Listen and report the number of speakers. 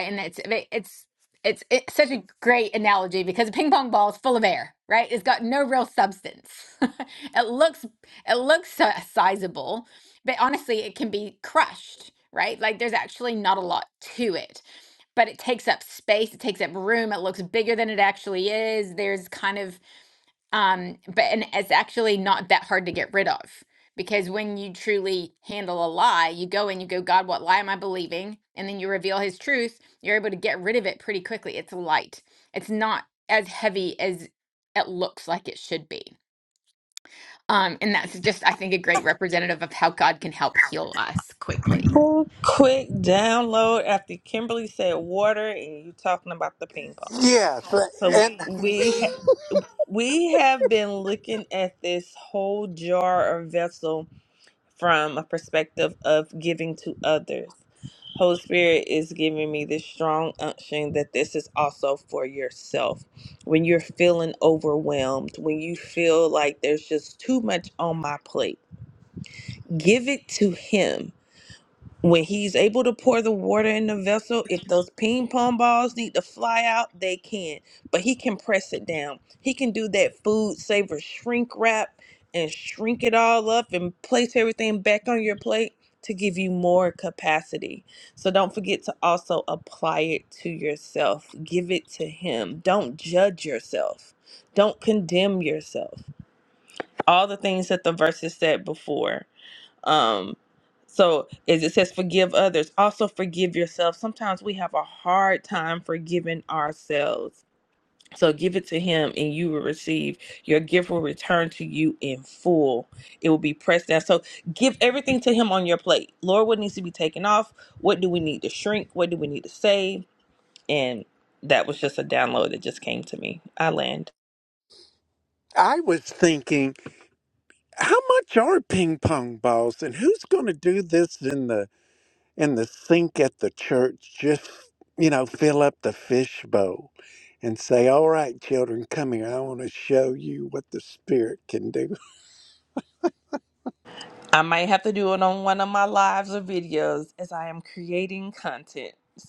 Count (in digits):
3